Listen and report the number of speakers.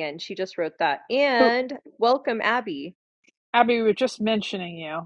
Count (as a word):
two